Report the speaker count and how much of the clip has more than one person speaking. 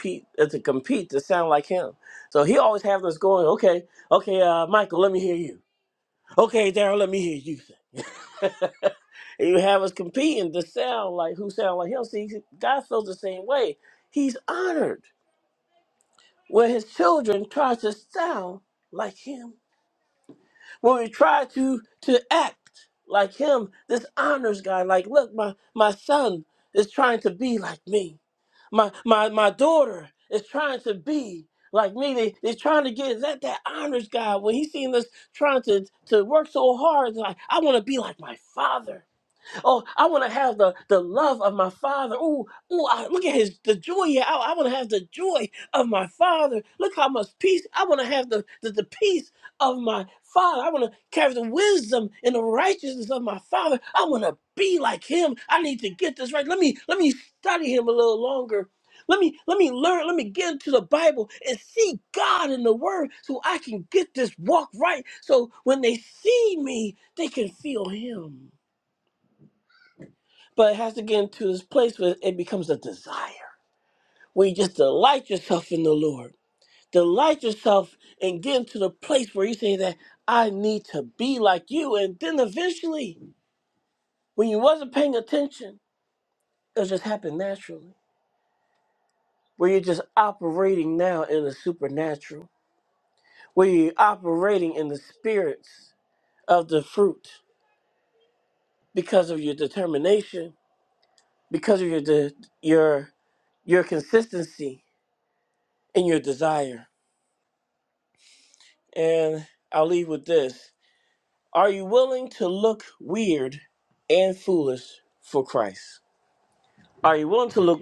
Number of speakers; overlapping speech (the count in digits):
1, no overlap